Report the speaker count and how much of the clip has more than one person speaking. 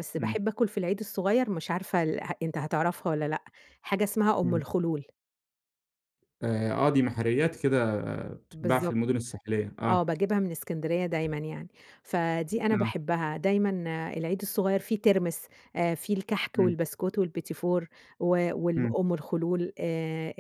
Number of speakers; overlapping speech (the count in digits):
2, about 8%